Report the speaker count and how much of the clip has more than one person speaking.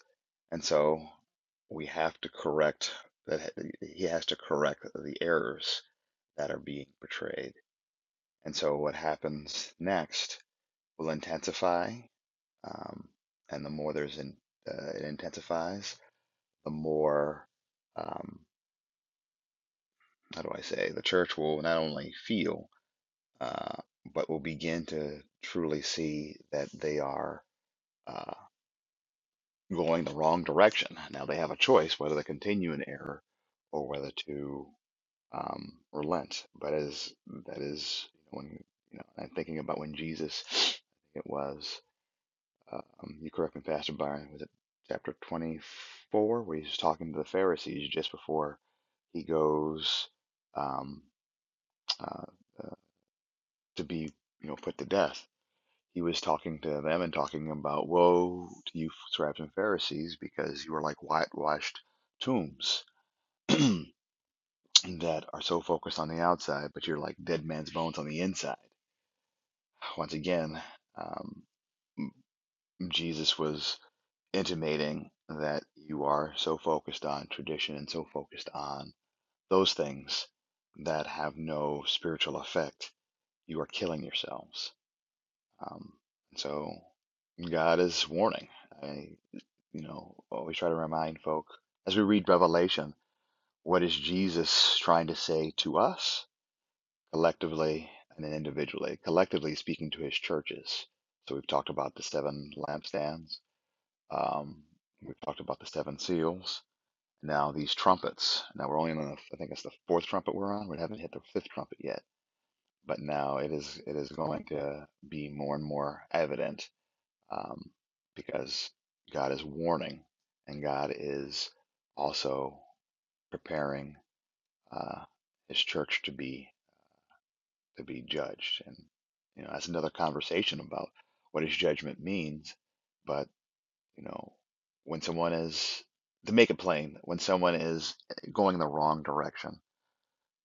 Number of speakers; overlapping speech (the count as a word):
one, no overlap